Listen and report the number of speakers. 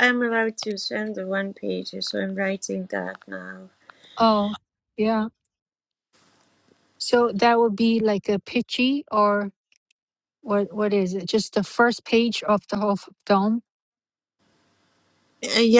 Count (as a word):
two